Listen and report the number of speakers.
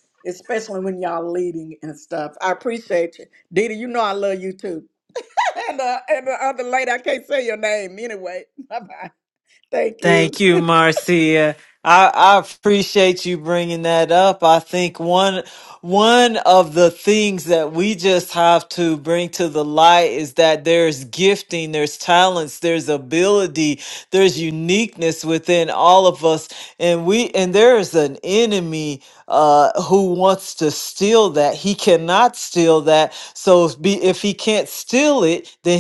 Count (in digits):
2